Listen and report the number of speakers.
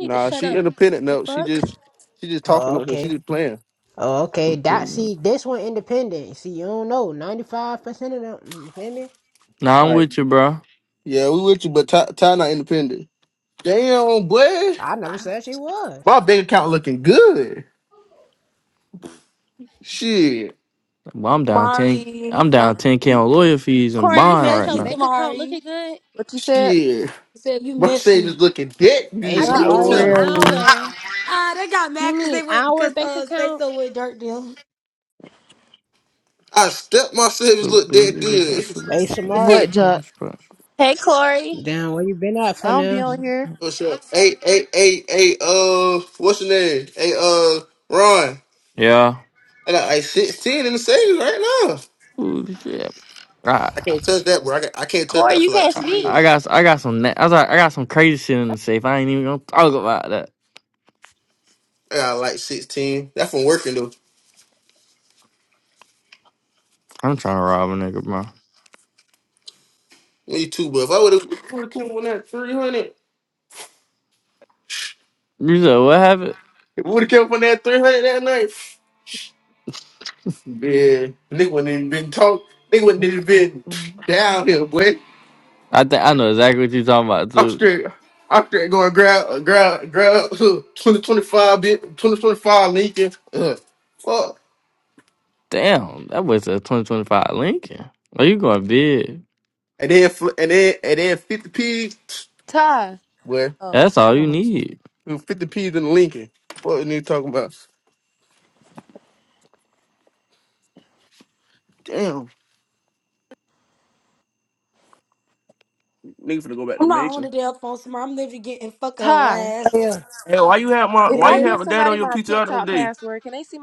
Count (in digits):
7